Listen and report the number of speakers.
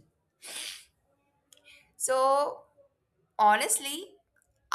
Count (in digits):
1